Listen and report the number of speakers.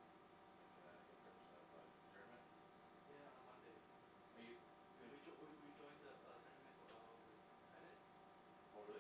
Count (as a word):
two